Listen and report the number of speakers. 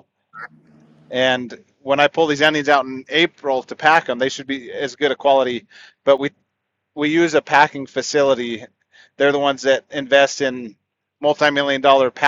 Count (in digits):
1